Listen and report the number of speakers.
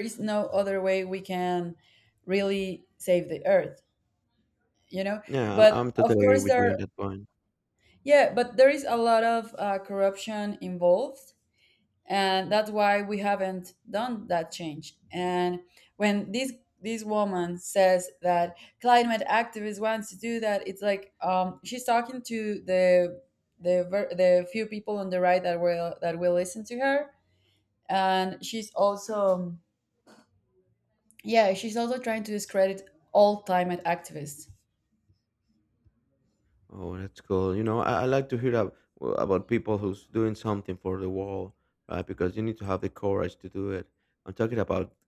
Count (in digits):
2